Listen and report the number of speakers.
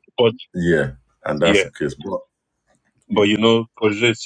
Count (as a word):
two